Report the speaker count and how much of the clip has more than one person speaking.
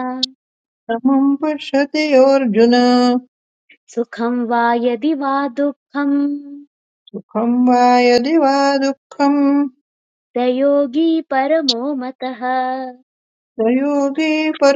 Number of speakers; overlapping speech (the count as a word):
two, no overlap